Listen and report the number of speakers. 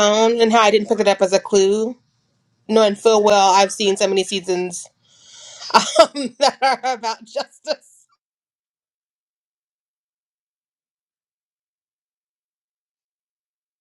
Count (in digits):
1